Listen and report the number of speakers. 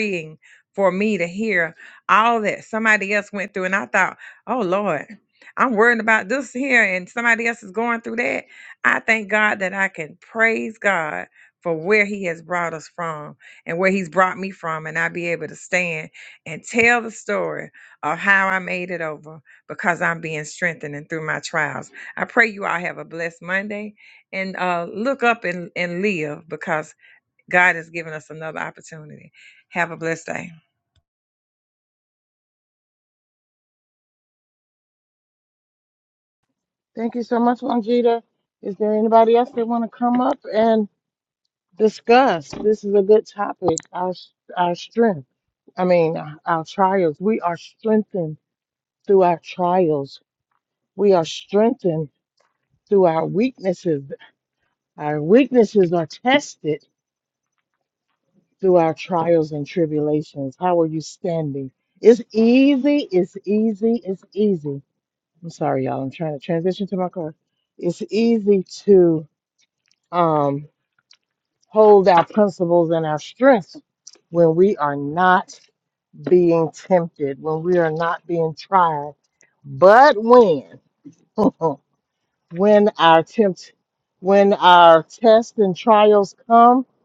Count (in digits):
2